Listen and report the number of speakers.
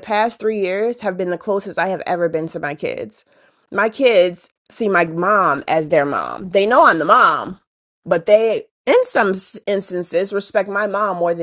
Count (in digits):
1